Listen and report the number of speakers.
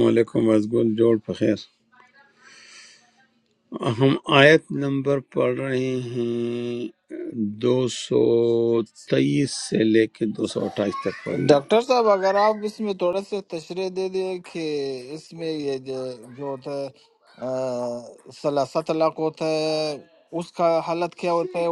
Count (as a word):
two